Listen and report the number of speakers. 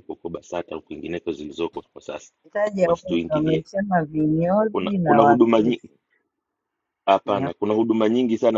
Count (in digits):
2